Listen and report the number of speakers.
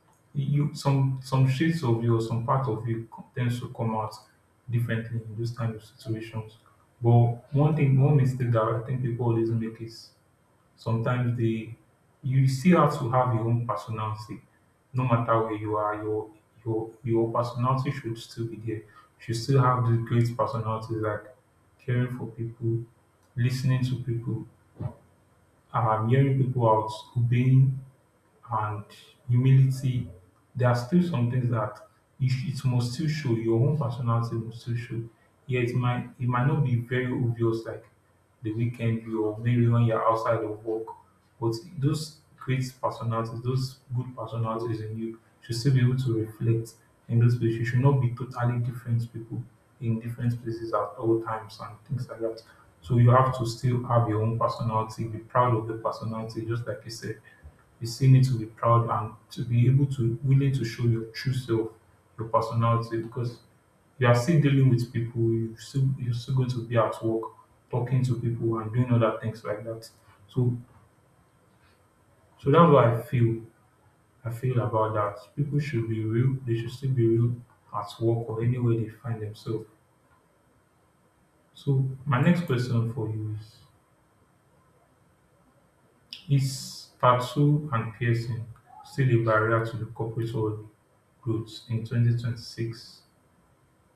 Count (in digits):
1